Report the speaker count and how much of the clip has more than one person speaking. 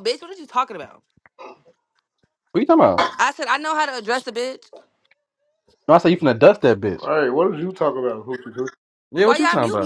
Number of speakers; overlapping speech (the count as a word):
three, about 7%